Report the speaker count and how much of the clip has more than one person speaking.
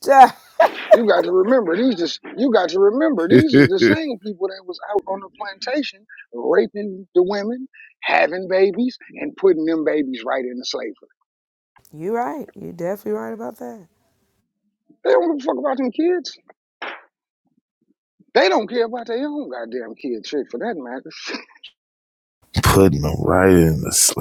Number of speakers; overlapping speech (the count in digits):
3, about 2%